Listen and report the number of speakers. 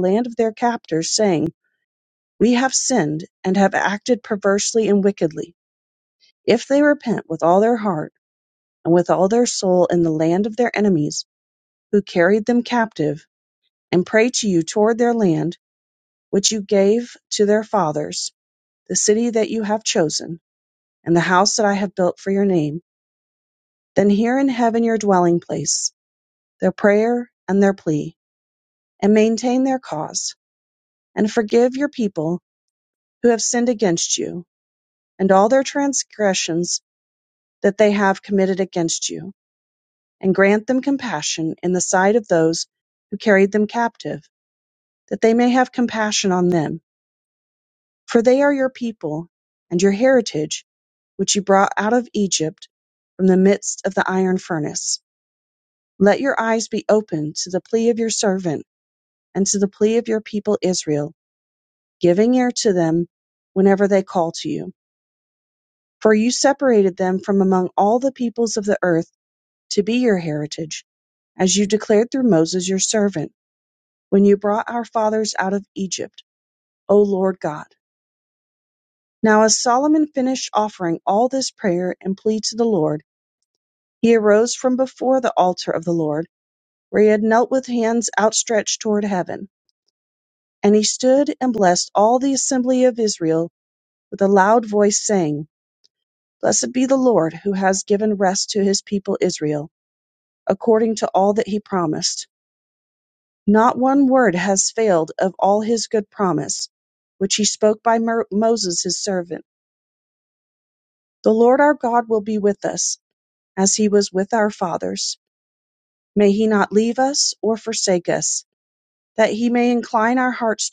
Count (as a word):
one